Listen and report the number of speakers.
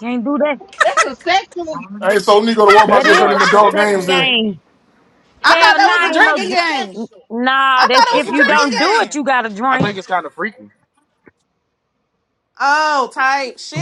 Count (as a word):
five